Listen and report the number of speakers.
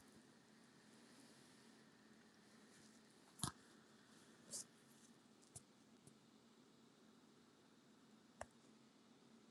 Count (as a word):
zero